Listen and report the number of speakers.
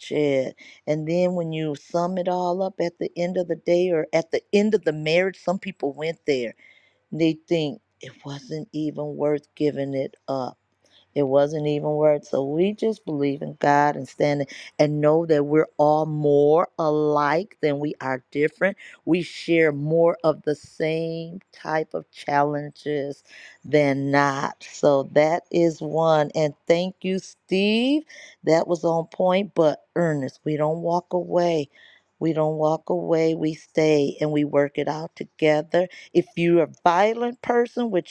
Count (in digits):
1